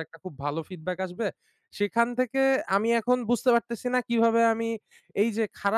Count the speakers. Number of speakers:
1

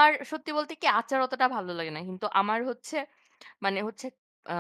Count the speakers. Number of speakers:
1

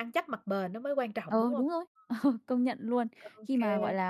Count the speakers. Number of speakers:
2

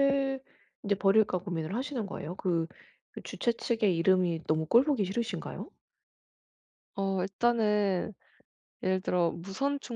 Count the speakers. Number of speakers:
2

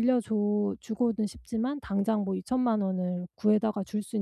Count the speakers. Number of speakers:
1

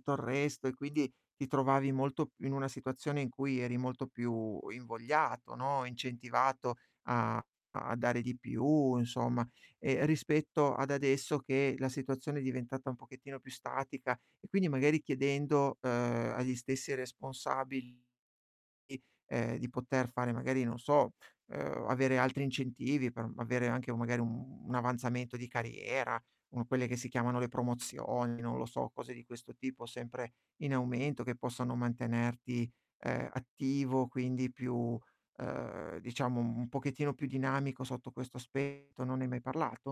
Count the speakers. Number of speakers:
1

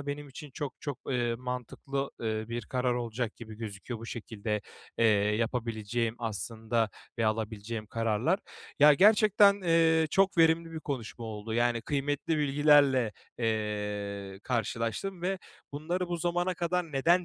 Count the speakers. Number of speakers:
1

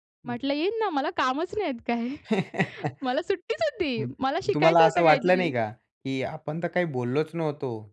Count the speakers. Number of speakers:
2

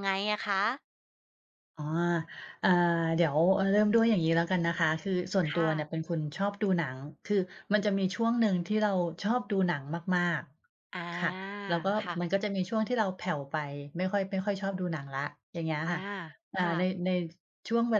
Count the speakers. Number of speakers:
2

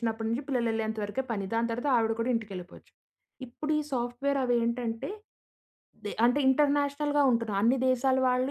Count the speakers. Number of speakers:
1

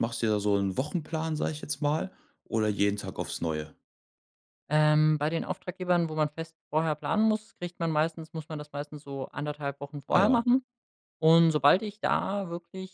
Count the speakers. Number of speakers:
2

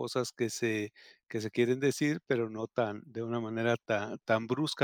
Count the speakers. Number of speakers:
1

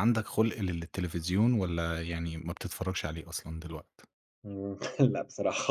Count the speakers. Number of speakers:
2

